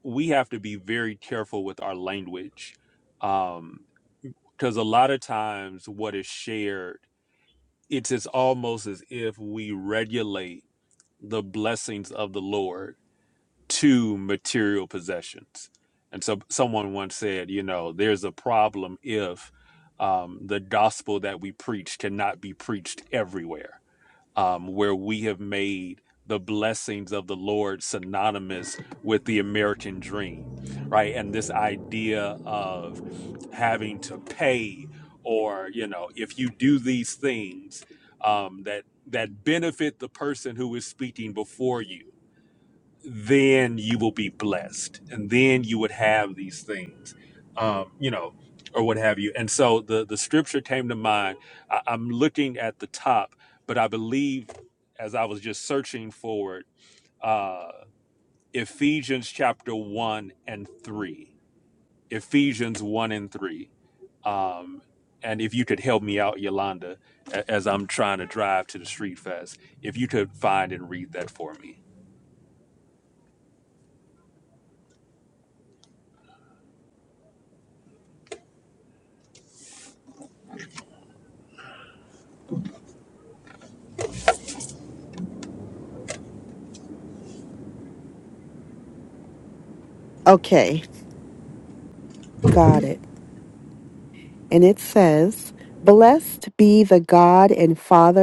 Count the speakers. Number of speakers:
2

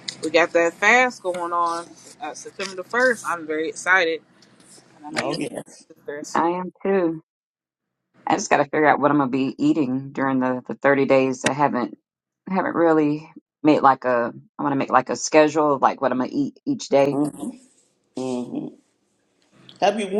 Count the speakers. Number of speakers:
3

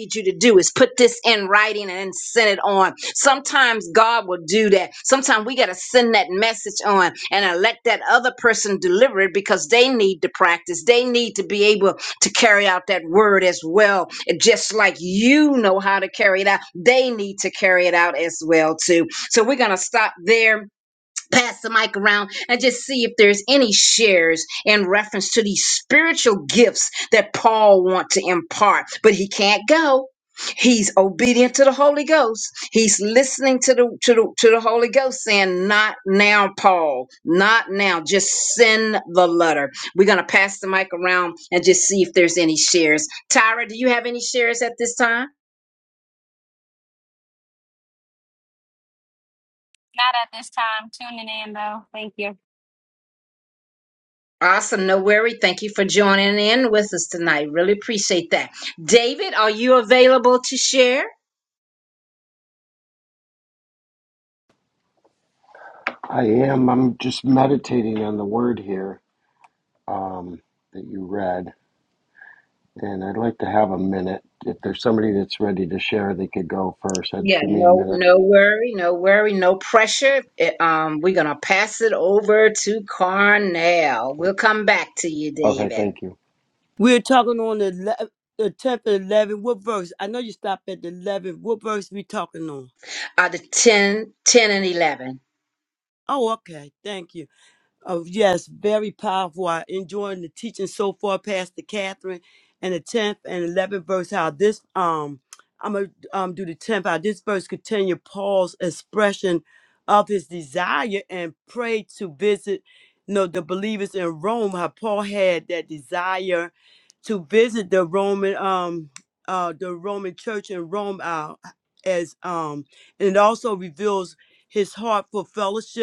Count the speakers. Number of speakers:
4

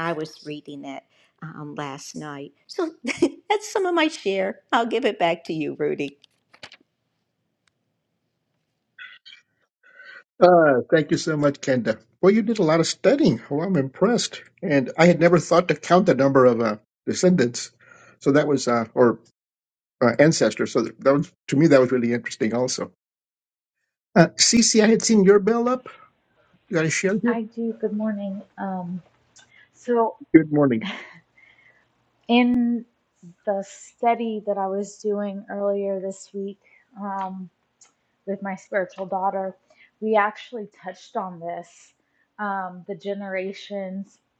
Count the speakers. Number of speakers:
3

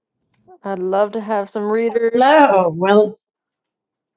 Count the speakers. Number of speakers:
2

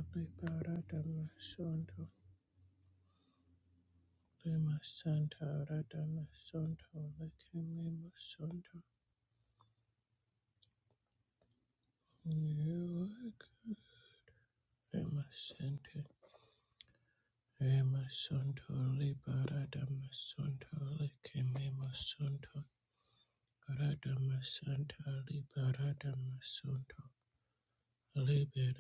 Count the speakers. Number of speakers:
1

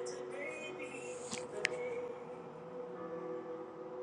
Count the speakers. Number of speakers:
0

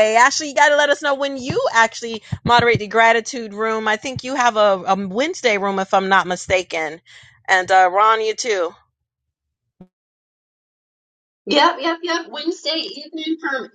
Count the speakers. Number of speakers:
2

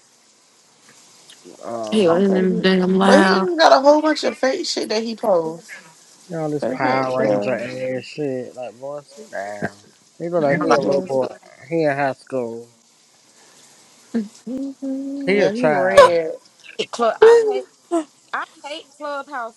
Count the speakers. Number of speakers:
4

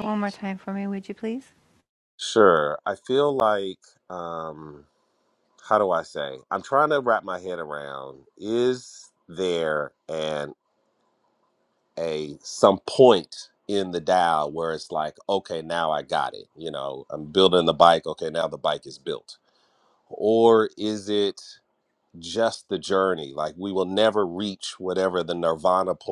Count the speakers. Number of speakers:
2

